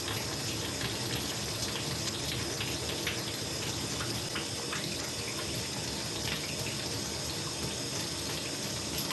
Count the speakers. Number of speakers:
zero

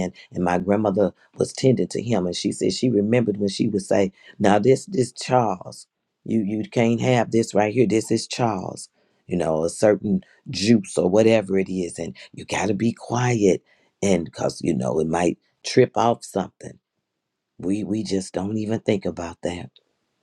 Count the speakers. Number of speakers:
one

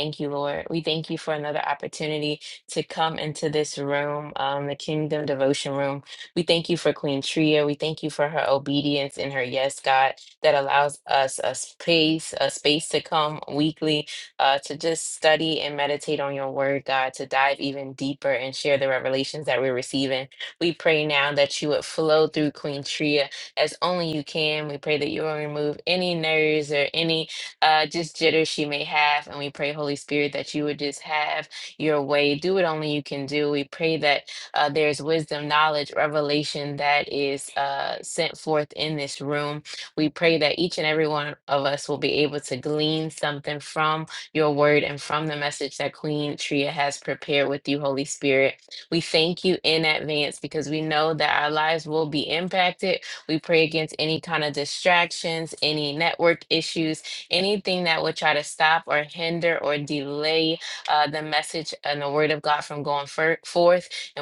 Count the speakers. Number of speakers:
one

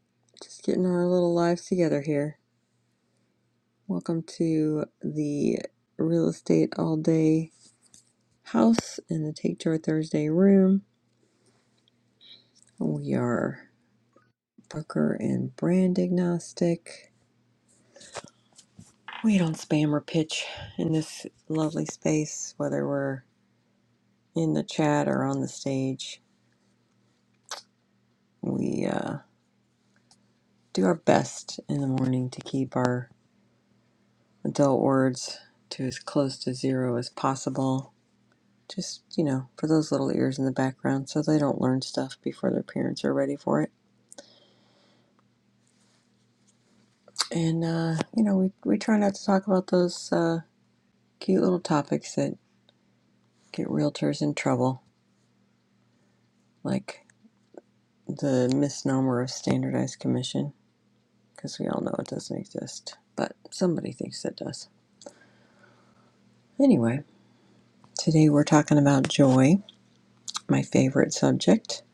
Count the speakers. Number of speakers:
one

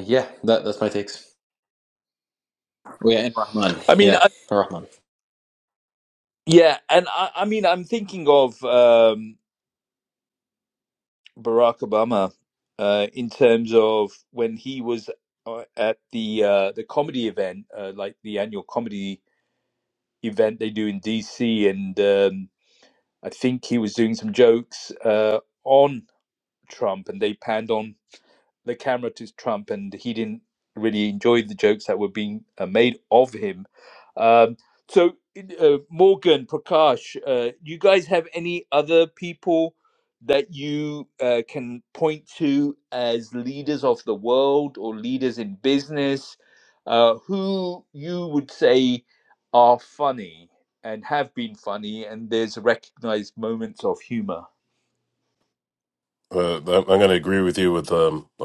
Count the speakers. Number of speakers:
three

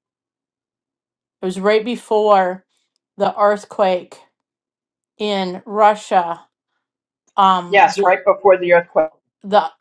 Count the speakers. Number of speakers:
two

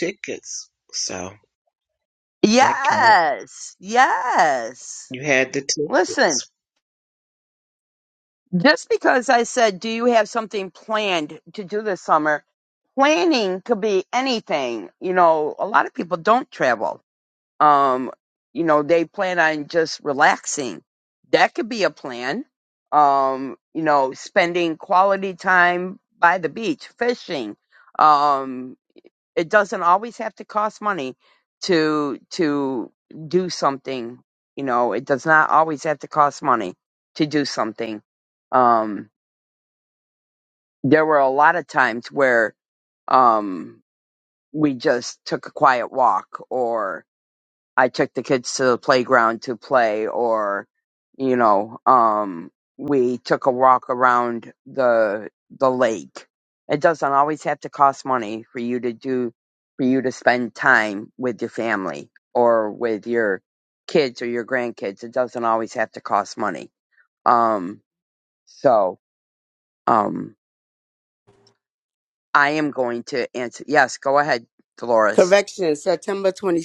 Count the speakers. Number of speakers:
three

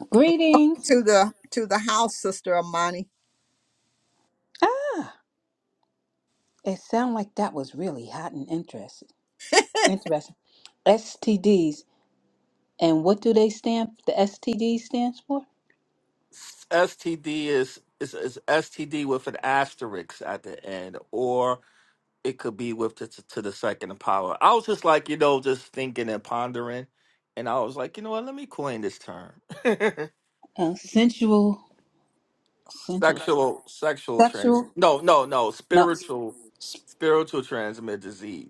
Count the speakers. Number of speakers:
three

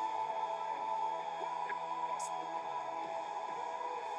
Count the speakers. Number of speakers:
zero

